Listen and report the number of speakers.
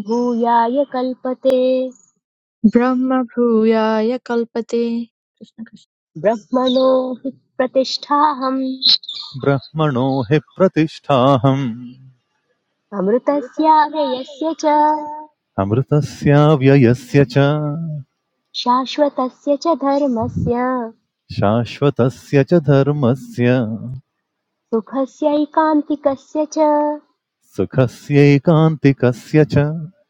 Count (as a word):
three